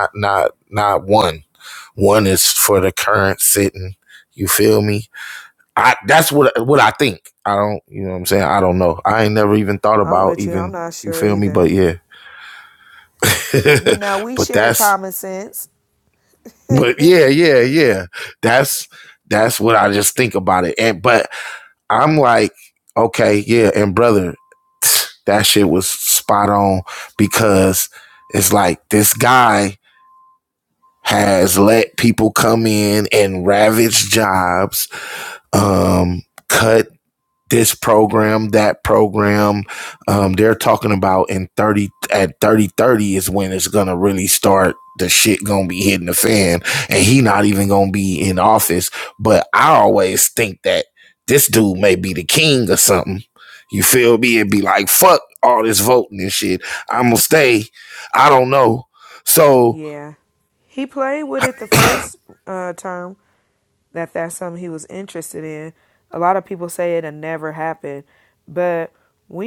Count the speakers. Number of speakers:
two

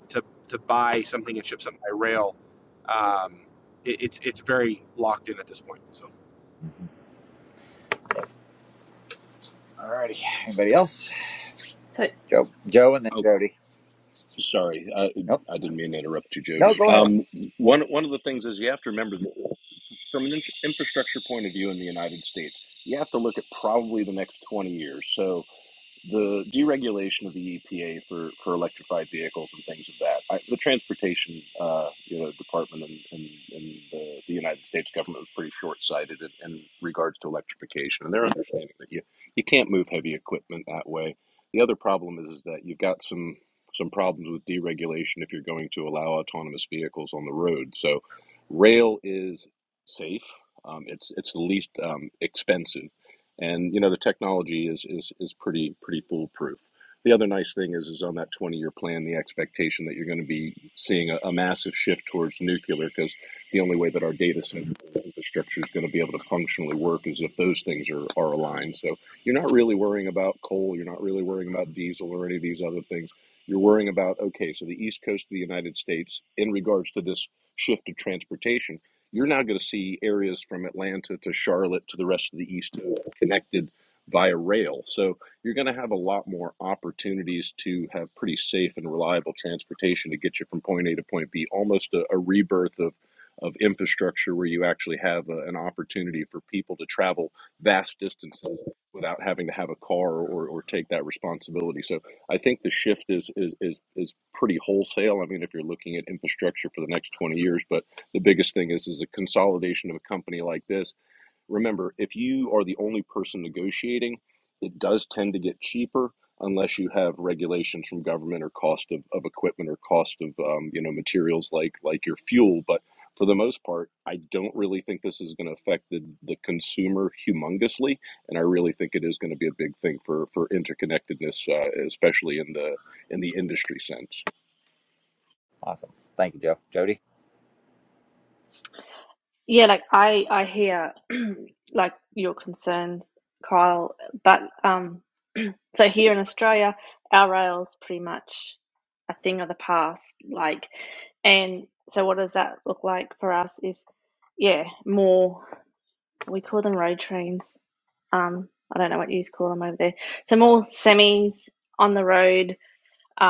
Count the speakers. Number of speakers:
four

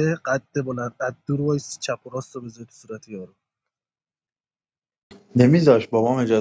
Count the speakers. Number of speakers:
two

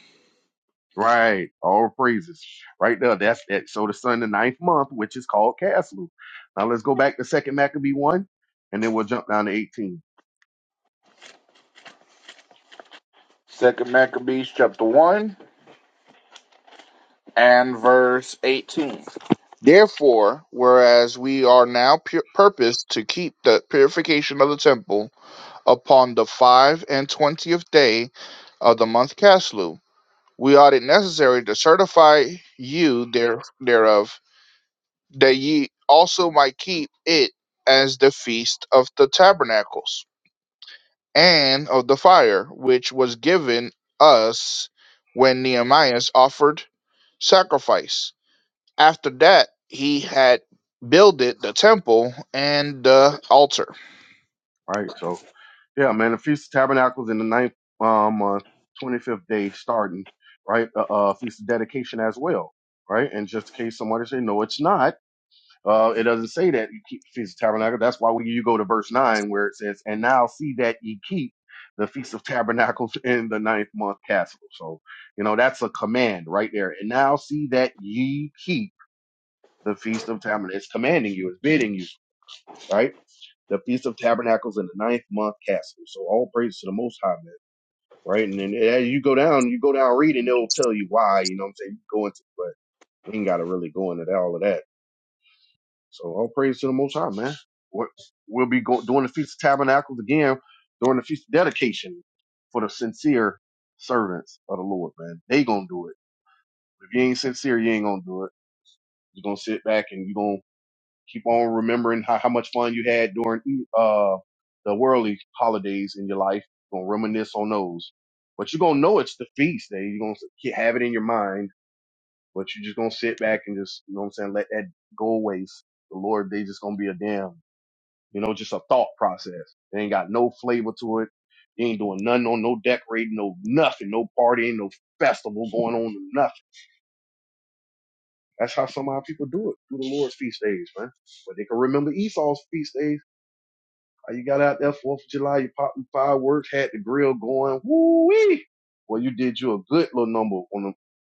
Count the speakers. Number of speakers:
two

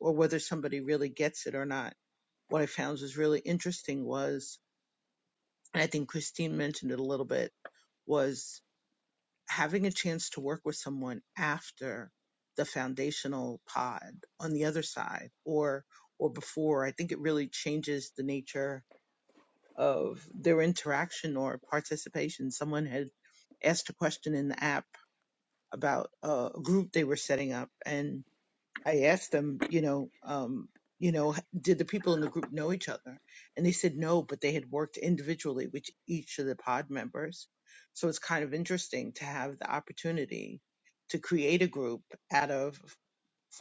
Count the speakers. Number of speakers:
one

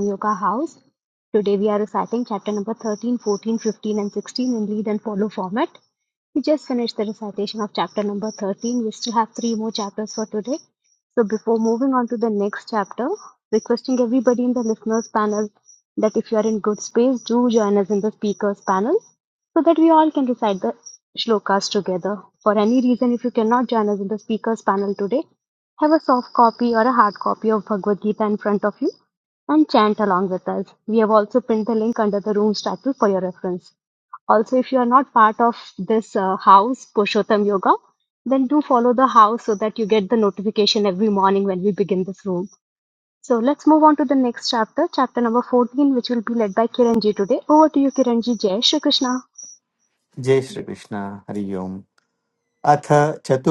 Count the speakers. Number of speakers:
two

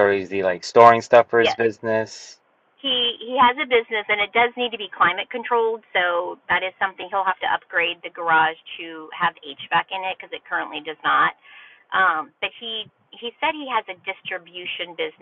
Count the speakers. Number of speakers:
two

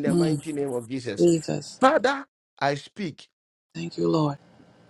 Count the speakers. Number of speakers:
two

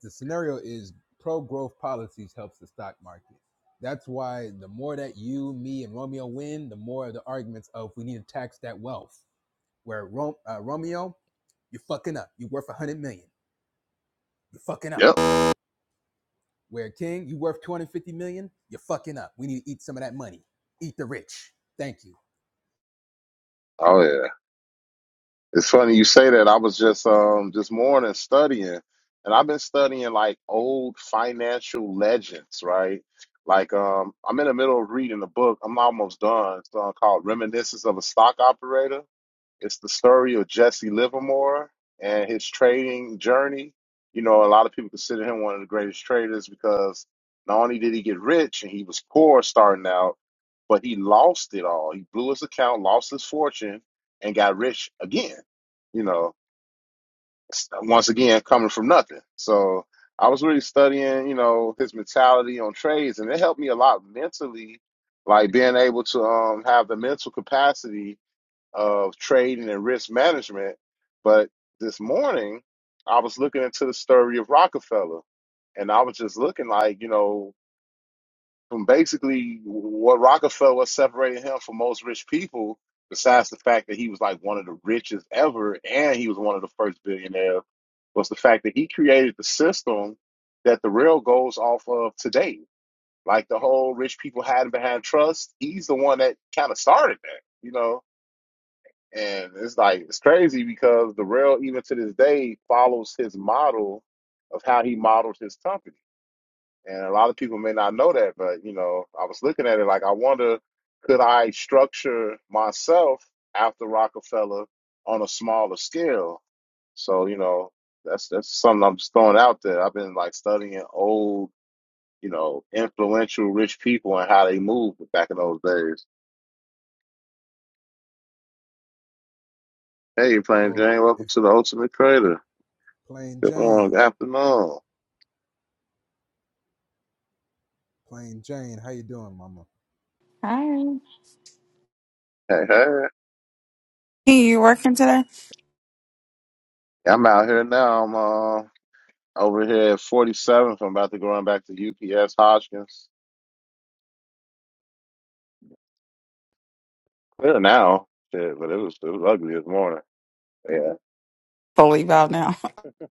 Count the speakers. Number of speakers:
three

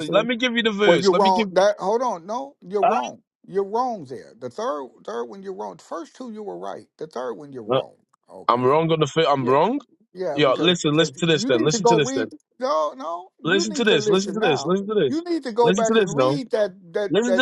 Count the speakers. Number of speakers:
two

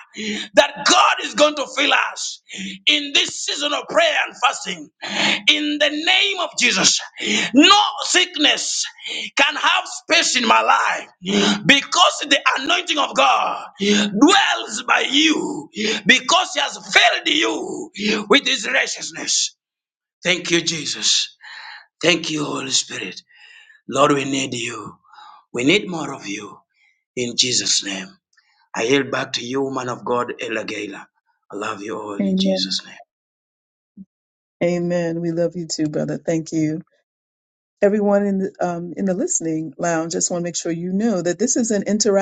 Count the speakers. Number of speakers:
two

